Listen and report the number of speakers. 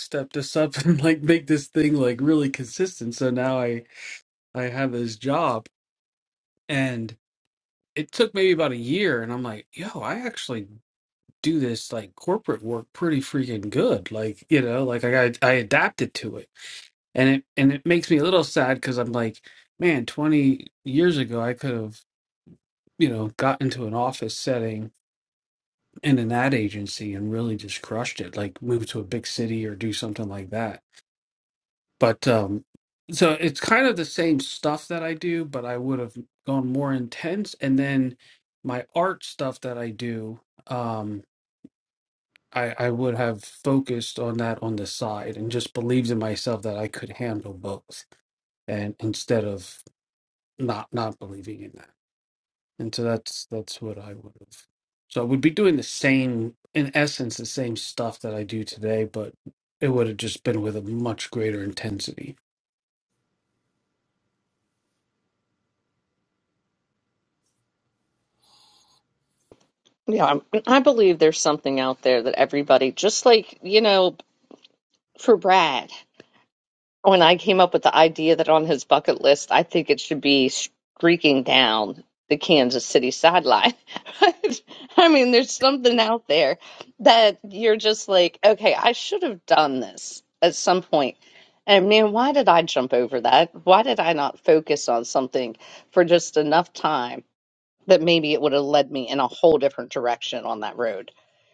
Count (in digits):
2